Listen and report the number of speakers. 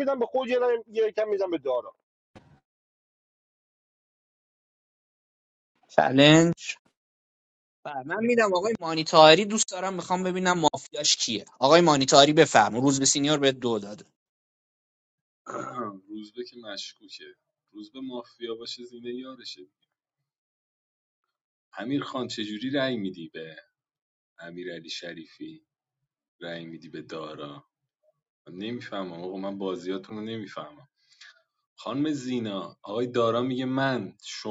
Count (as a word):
three